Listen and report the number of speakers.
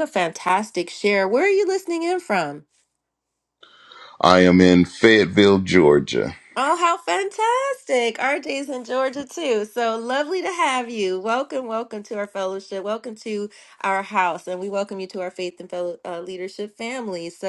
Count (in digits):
2